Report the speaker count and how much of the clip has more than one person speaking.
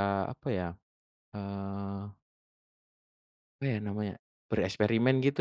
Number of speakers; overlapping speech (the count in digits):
1, no overlap